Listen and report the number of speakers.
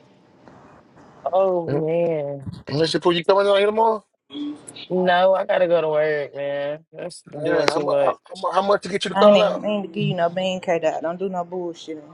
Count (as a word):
three